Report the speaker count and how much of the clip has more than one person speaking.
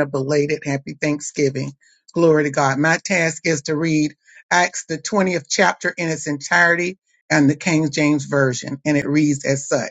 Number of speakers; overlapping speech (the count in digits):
1, no overlap